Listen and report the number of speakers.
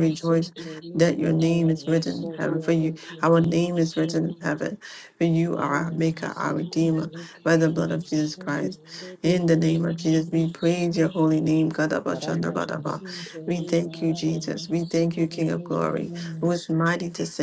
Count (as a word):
two